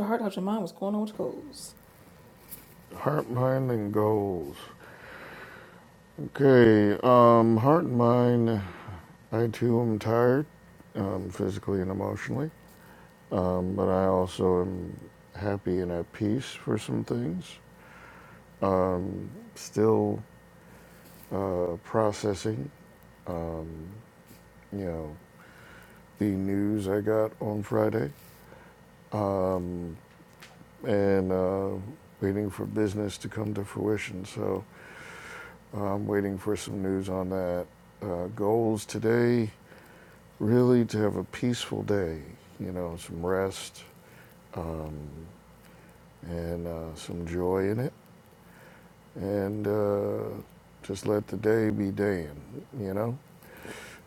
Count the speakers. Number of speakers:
two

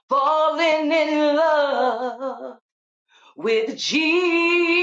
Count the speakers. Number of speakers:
one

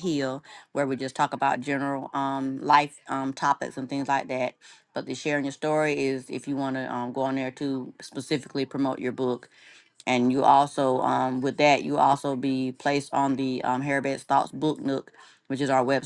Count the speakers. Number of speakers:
one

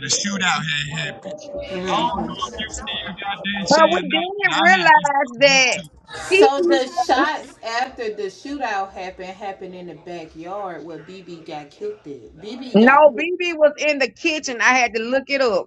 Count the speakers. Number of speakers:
three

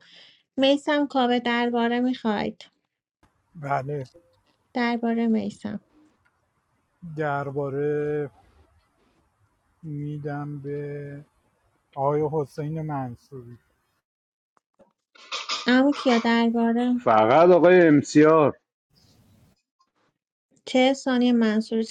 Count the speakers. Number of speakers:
three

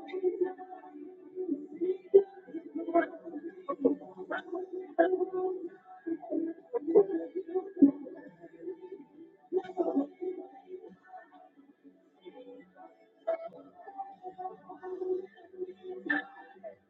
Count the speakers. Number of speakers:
zero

